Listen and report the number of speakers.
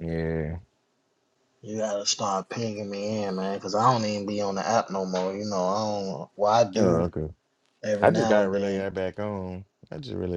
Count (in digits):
2